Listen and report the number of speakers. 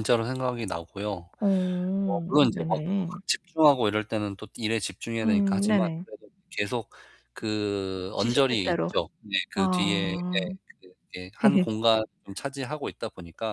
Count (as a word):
two